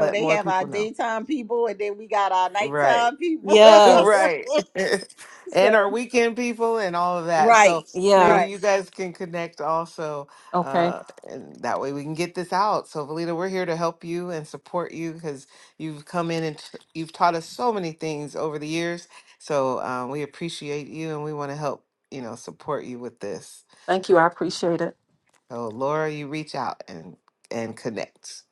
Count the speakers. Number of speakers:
three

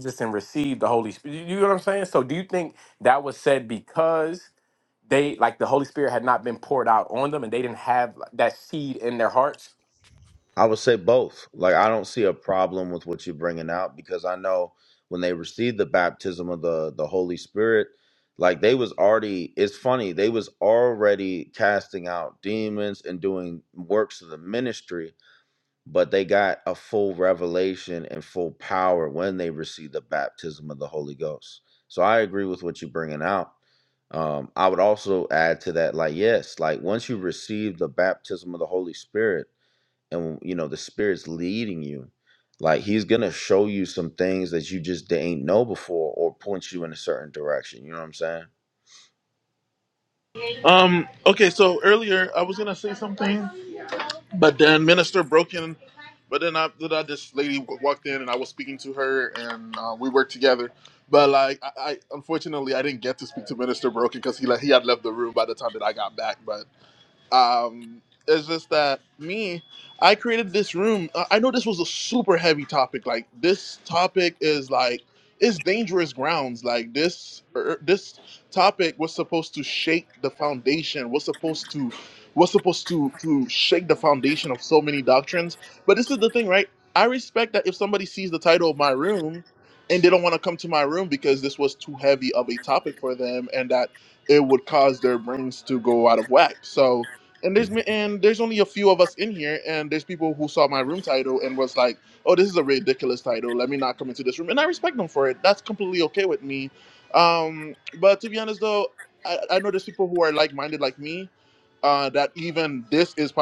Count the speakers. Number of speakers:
three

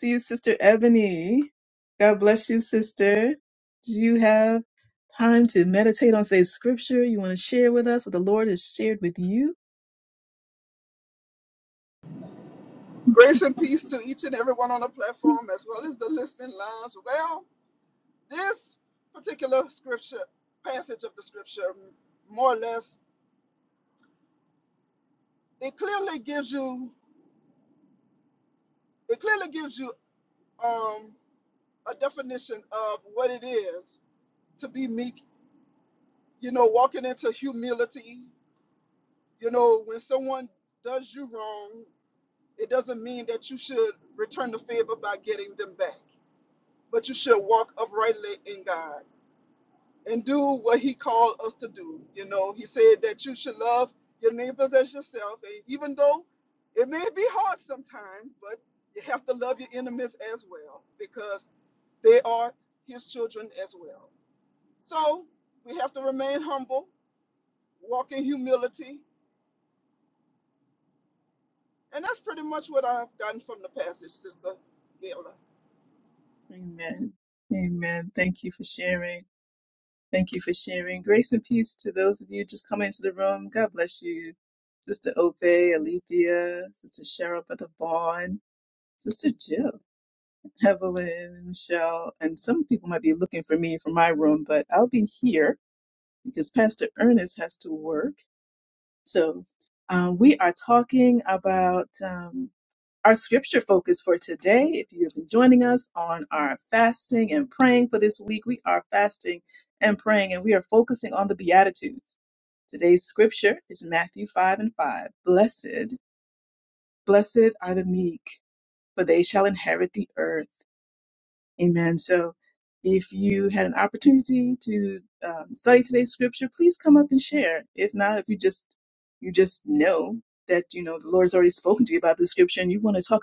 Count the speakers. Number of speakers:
two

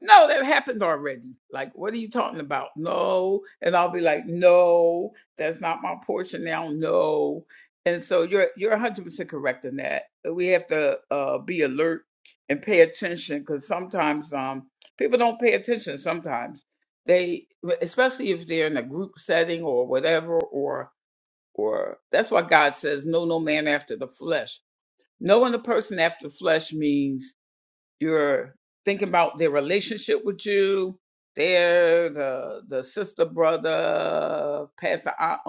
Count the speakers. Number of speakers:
one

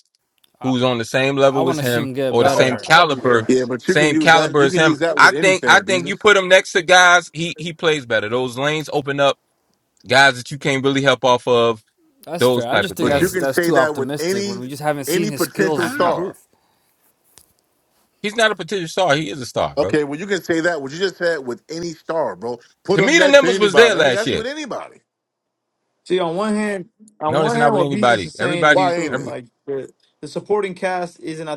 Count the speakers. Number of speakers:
four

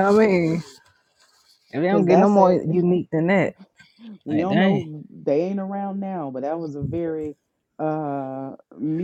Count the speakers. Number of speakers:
two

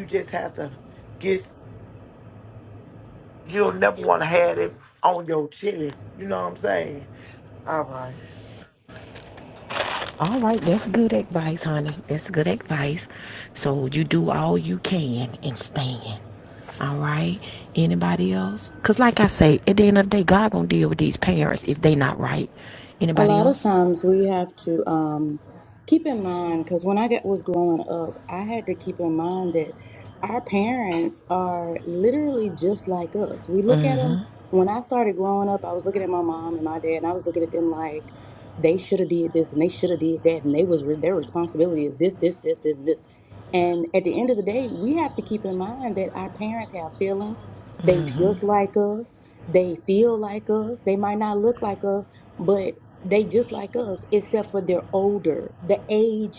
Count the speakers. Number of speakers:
three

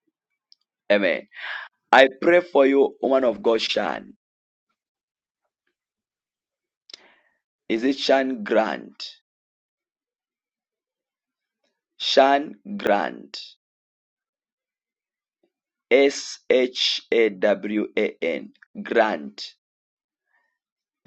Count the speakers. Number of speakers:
one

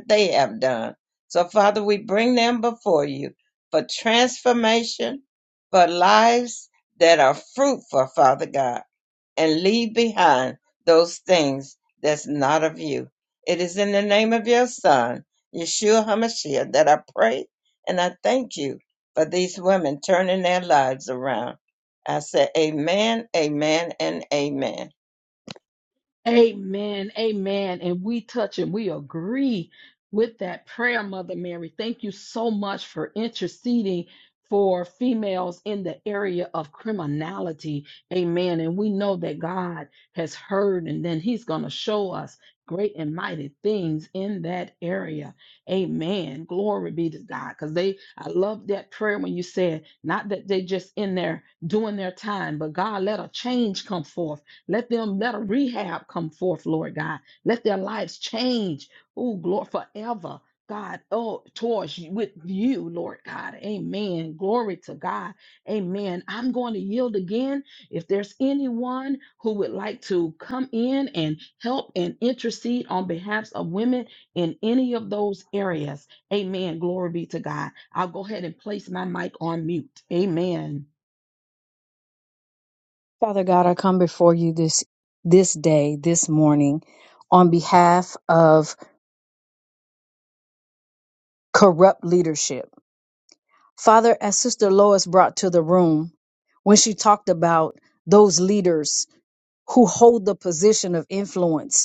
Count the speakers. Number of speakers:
three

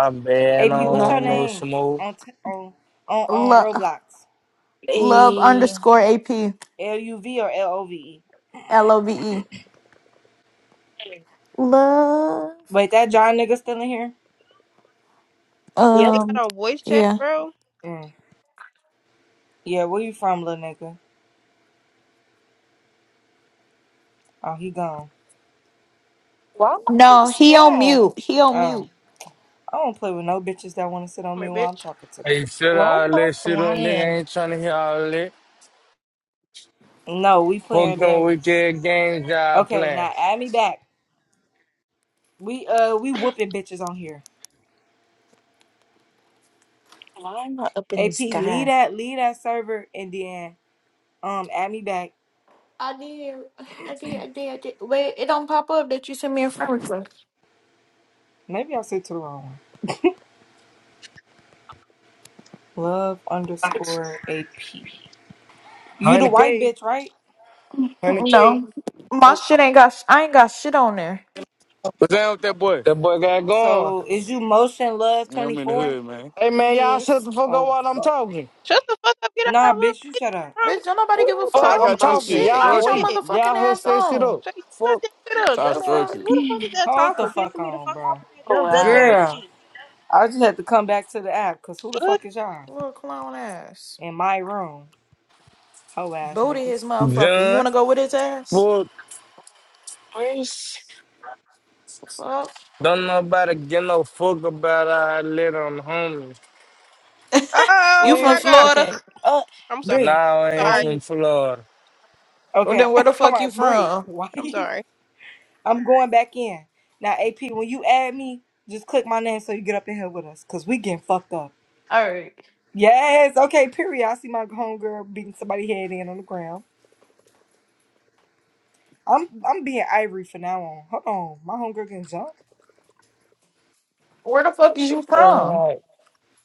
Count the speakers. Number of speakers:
six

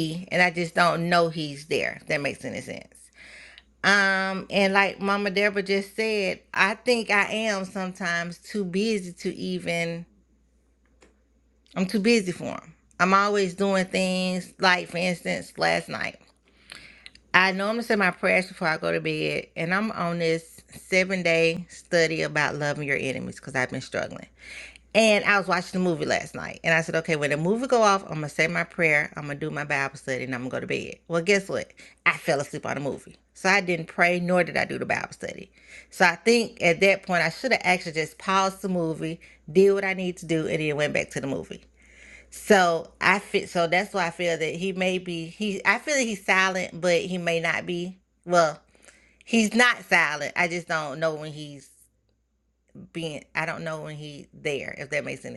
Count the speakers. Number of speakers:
one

